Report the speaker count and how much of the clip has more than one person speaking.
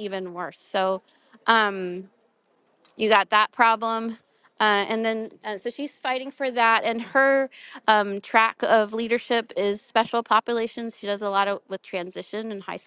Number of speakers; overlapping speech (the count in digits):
1, no overlap